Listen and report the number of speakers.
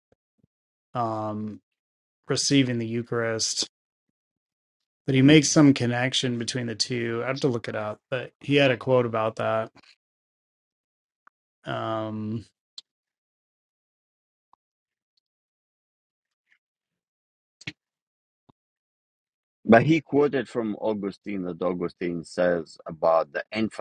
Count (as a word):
two